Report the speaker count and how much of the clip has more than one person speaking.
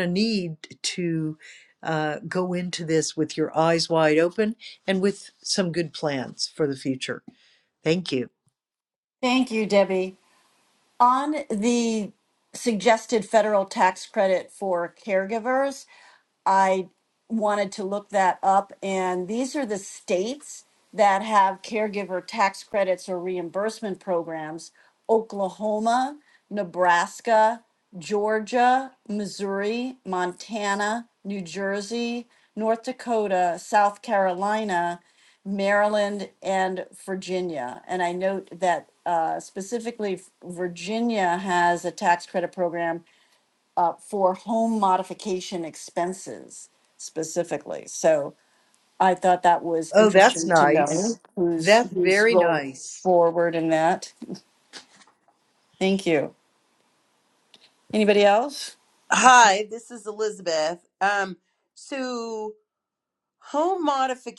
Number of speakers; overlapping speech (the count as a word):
three, about 3%